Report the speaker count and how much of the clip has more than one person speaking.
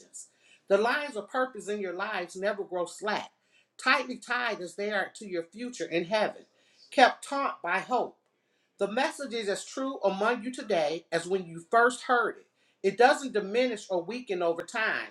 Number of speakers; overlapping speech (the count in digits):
1, no overlap